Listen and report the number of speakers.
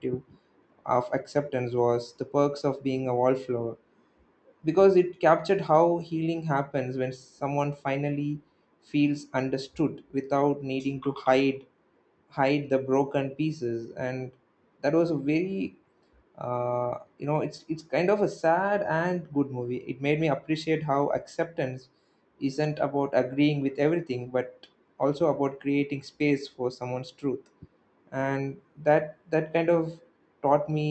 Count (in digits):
1